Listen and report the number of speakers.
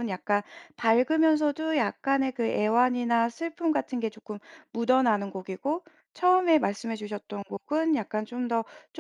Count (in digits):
1